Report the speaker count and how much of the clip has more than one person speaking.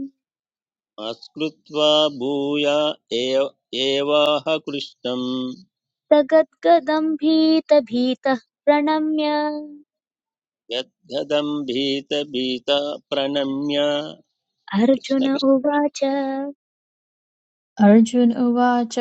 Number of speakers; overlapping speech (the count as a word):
three, about 1%